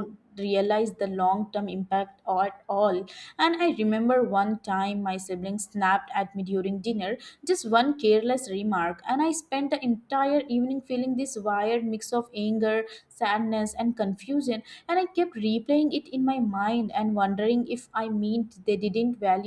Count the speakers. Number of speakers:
1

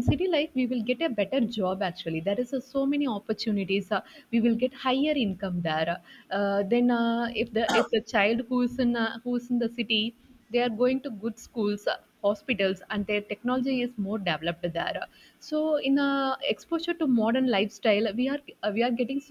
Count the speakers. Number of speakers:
1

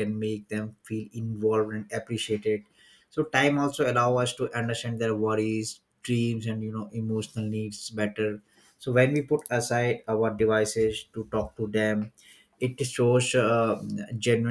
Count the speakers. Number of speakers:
1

